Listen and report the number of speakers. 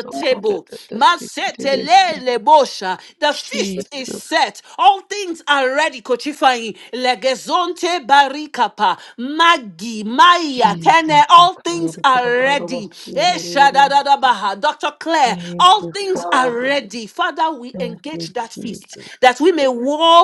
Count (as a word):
two